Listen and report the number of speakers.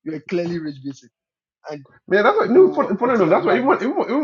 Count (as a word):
two